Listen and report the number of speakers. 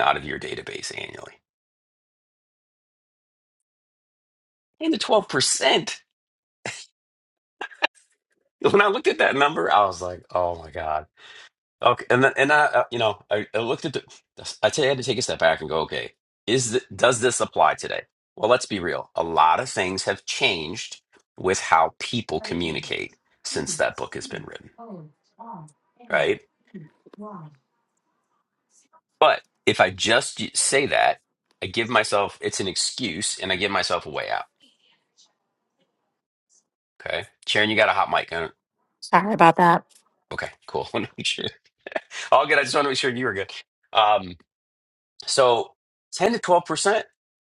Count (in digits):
2